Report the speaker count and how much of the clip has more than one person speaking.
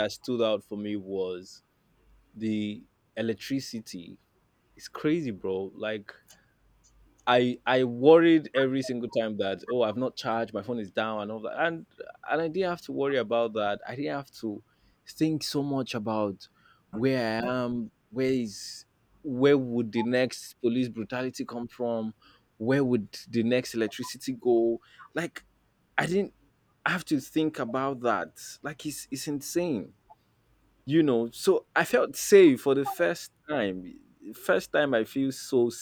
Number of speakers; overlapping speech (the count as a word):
one, no overlap